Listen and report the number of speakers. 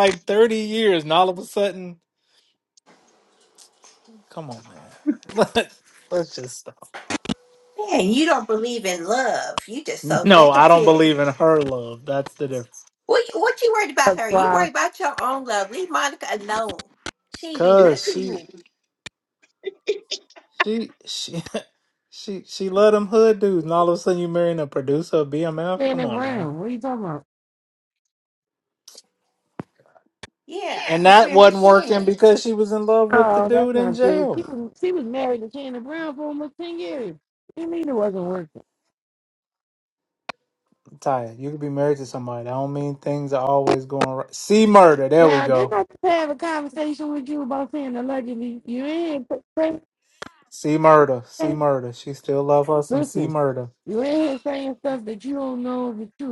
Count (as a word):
three